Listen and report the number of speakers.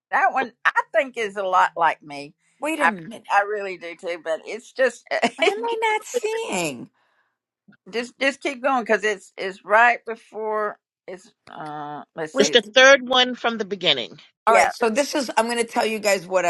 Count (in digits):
3